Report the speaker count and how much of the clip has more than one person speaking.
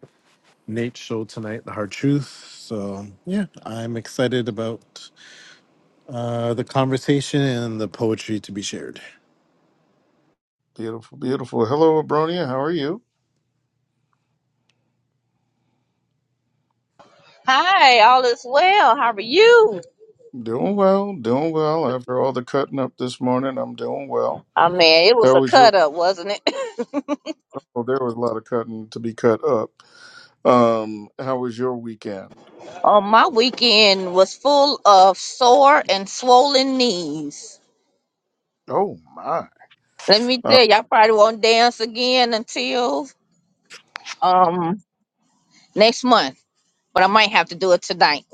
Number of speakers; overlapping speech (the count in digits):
3, about 1%